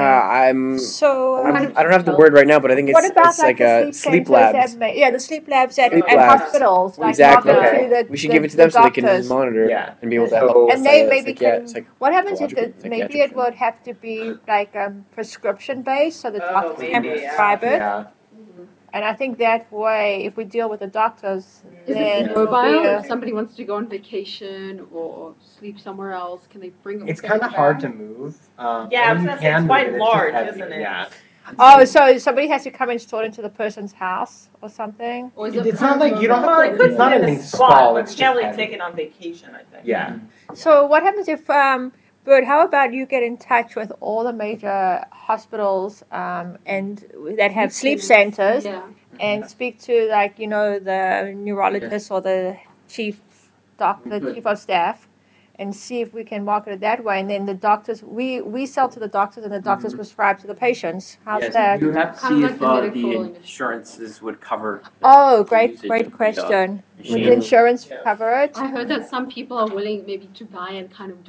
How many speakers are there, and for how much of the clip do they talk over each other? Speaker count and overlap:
6, about 38%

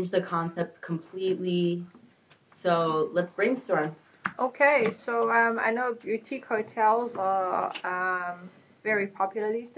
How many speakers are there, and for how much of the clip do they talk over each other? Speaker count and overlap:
2, no overlap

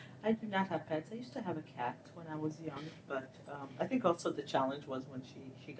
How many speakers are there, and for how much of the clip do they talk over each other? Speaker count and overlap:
1, no overlap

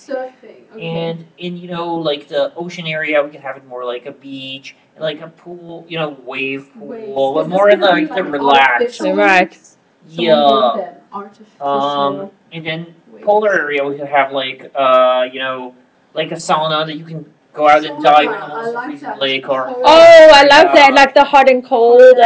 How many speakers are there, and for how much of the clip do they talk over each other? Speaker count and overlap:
3, about 39%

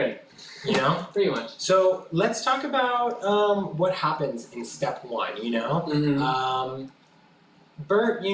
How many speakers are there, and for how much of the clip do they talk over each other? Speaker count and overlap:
2, about 1%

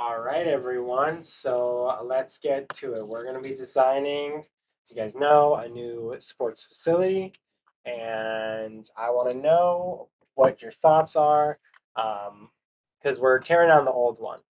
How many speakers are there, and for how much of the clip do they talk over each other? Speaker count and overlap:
1, no overlap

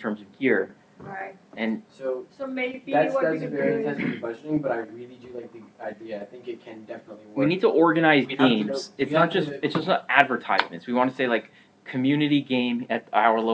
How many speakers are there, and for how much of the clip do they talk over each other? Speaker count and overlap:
3, about 22%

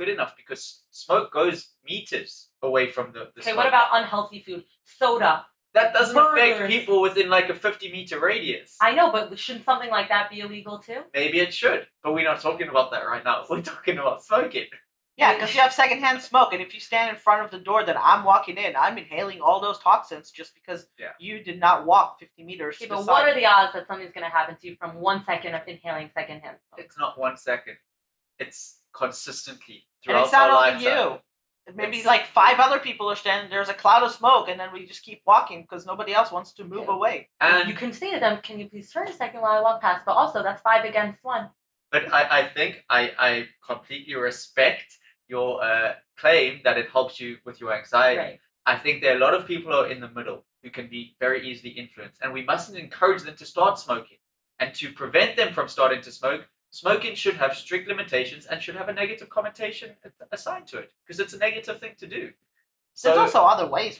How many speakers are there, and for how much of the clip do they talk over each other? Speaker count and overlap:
3, about 7%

